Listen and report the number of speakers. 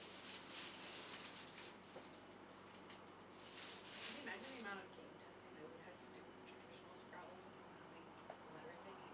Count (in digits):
1